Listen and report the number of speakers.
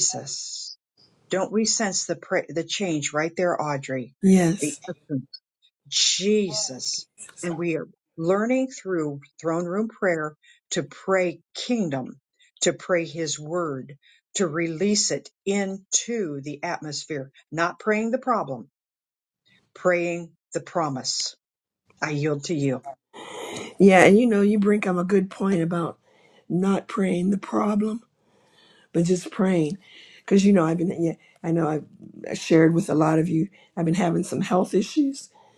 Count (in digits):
2